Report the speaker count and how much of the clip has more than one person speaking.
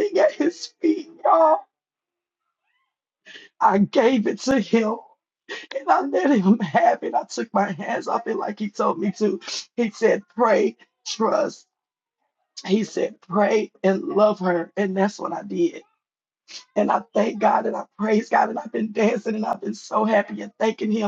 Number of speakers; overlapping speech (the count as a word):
one, no overlap